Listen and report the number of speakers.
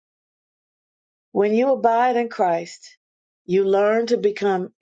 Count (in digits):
1